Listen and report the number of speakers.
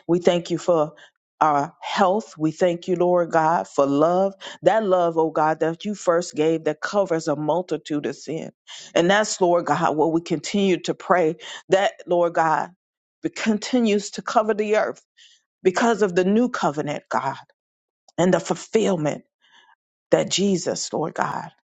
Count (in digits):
1